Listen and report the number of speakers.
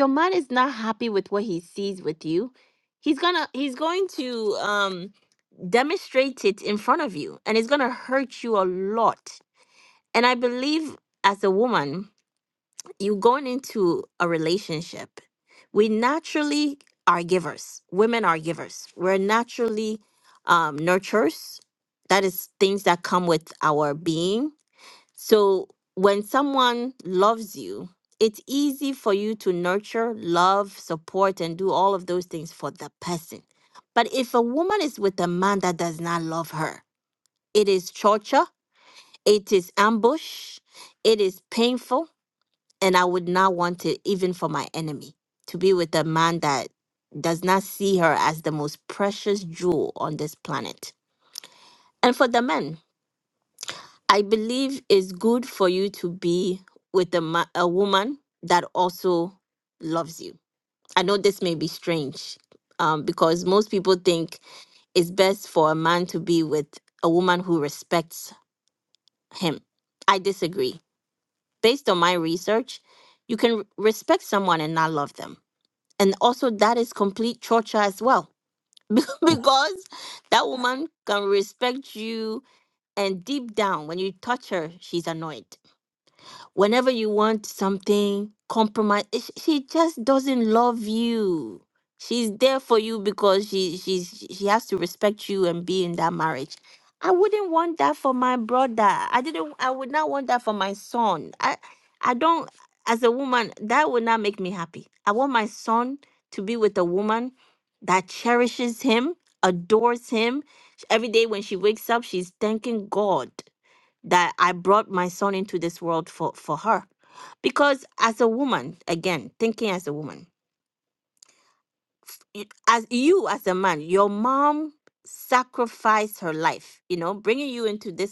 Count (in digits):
1